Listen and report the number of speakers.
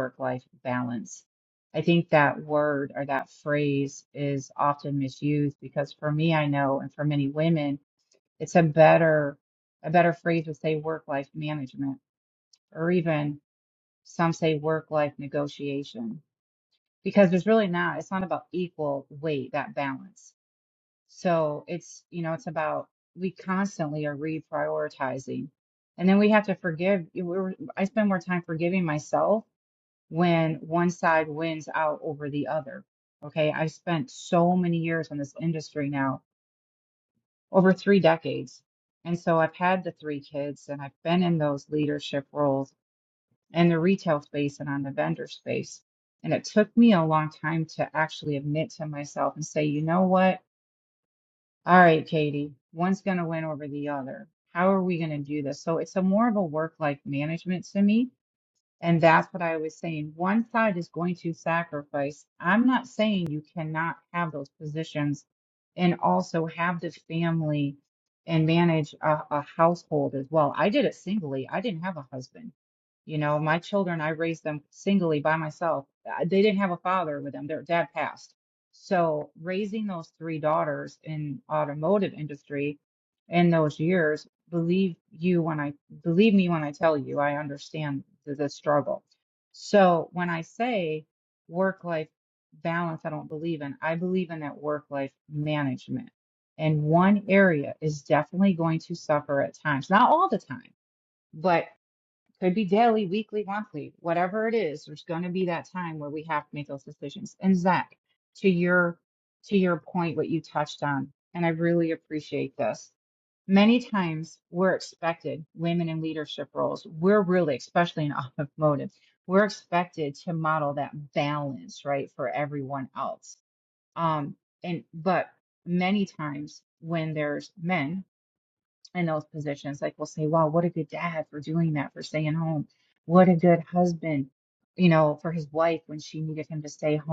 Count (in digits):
1